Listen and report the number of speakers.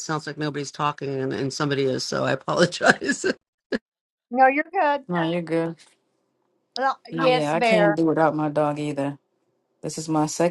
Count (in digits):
3